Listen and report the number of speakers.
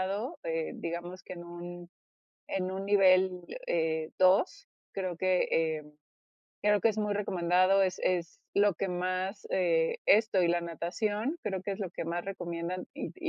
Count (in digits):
1